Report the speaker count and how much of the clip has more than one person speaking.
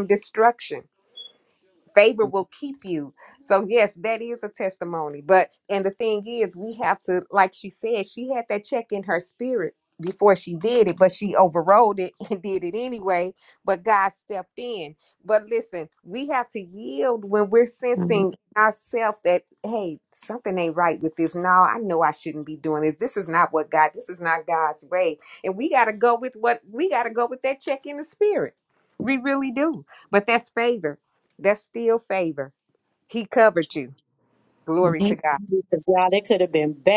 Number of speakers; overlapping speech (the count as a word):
two, no overlap